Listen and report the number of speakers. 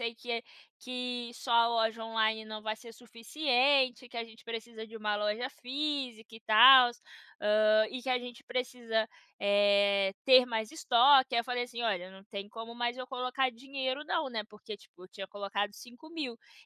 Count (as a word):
one